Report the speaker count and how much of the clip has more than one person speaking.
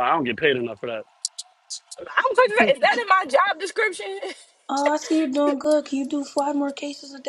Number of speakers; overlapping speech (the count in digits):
3, about 2%